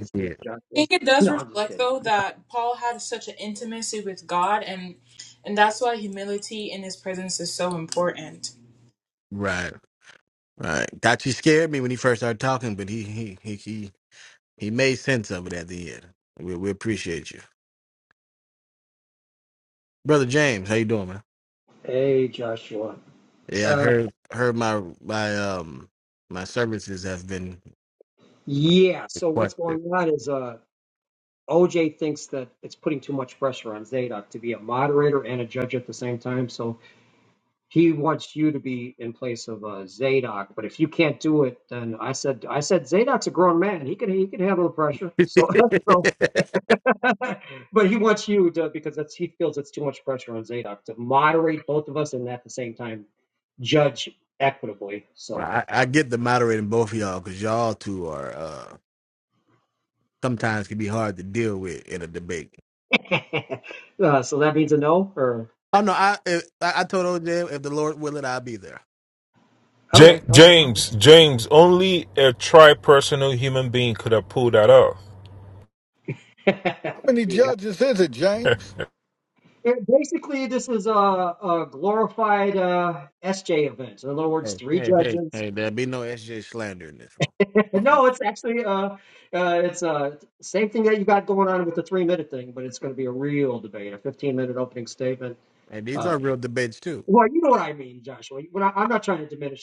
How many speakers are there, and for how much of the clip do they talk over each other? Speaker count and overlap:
5, about 4%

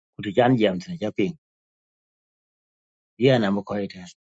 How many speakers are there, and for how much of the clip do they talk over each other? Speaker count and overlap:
1, no overlap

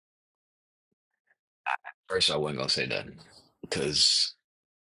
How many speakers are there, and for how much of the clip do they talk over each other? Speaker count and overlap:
1, no overlap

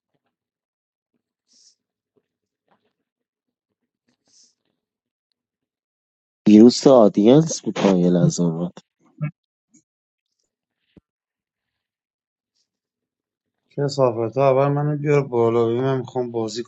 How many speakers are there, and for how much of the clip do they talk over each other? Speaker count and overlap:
2, no overlap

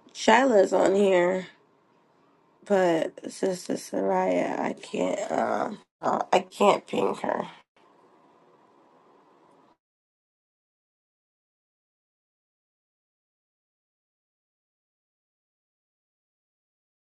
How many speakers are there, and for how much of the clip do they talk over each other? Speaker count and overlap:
1, no overlap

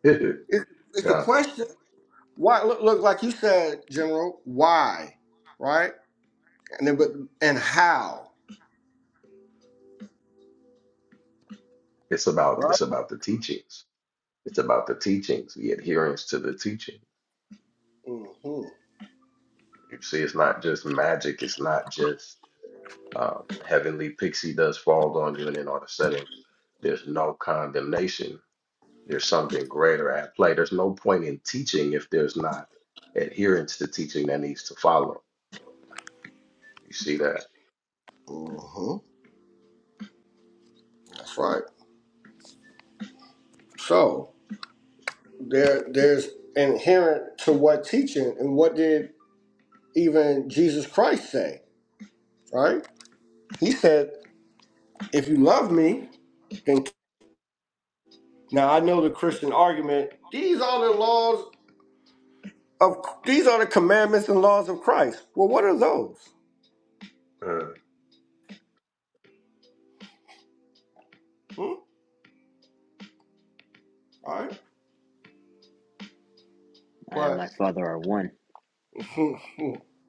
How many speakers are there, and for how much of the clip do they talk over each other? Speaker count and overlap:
3, about 1%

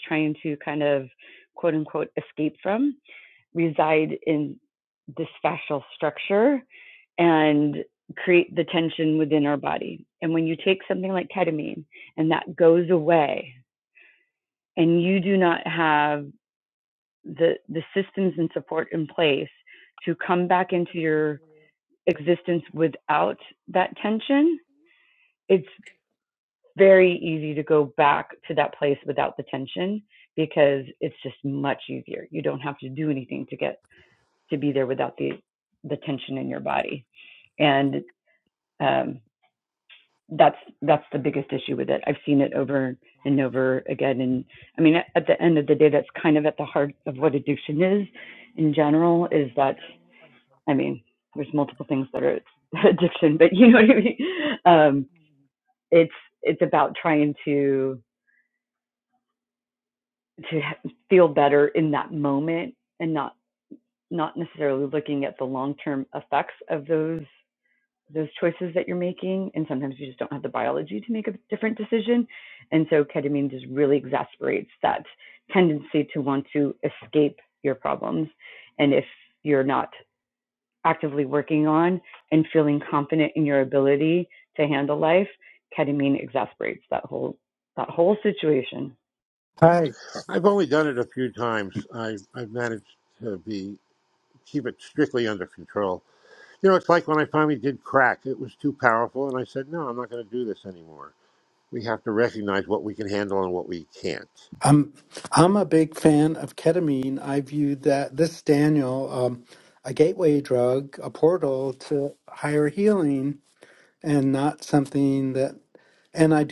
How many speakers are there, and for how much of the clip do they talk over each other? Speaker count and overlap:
3, no overlap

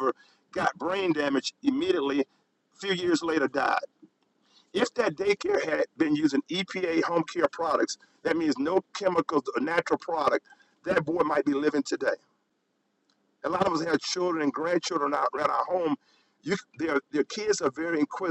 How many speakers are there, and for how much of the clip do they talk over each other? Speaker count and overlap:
1, no overlap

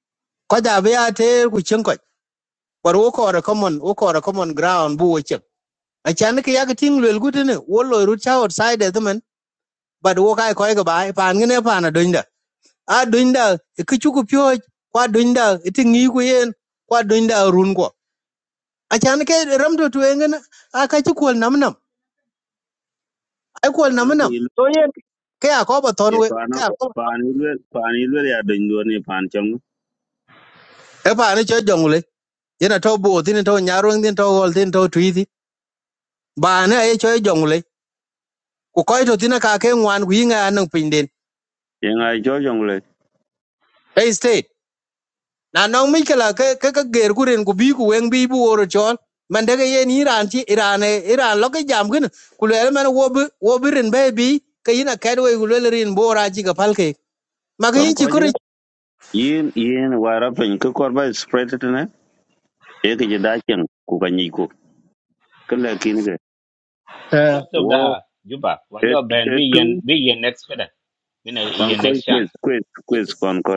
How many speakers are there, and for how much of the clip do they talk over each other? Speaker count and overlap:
3, about 4%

